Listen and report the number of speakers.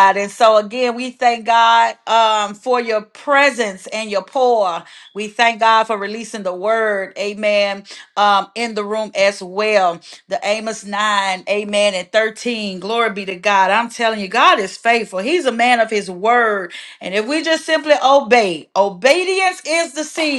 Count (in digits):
1